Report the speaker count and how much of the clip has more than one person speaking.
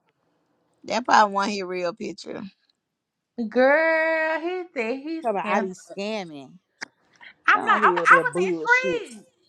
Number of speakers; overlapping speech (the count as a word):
three, about 20%